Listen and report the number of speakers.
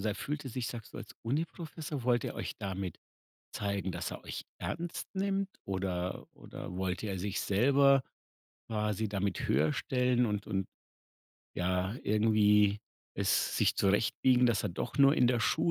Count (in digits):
1